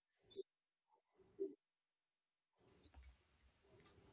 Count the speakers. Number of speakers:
0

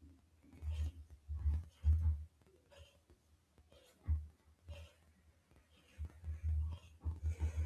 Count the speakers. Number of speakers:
0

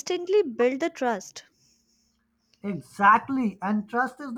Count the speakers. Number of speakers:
2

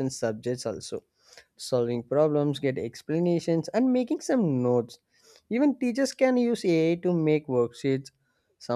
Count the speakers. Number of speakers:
1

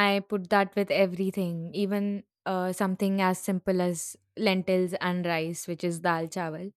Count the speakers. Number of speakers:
1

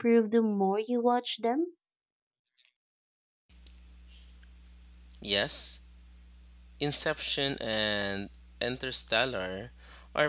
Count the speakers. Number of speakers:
2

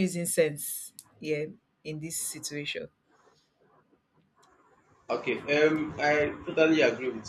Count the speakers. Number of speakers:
2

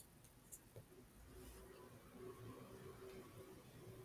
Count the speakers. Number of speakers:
0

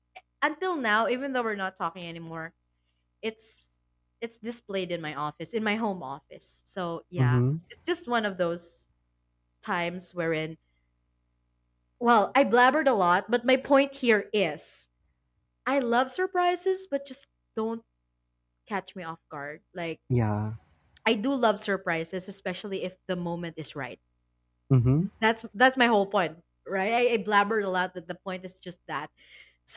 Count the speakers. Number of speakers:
2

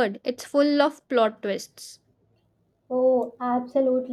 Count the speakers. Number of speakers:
2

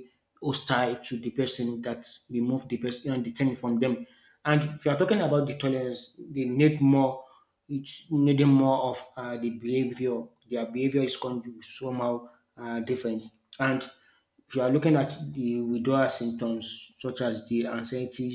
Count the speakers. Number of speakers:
1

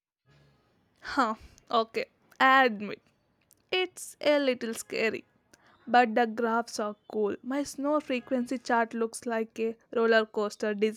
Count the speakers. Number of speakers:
1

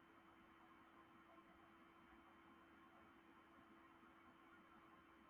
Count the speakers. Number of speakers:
0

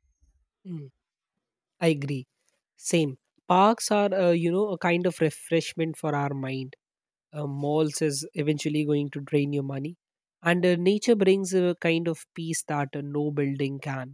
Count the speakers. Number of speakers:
1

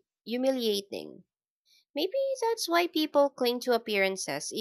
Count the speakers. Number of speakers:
1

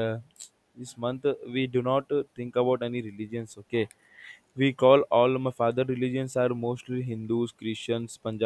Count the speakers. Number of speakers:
1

